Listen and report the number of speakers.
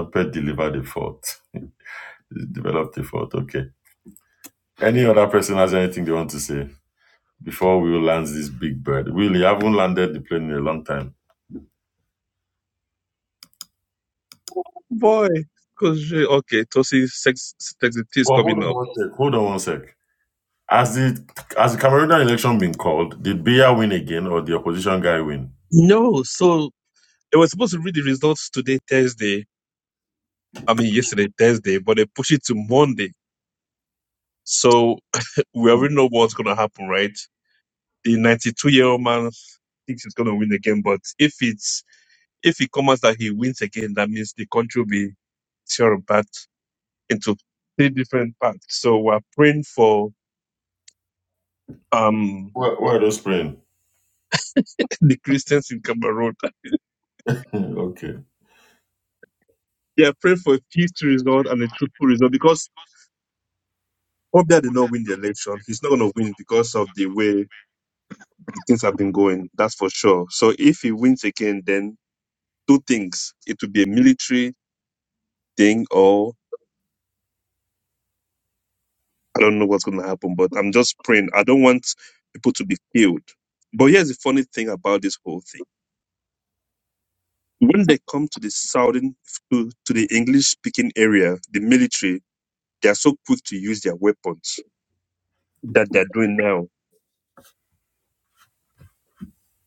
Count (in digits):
2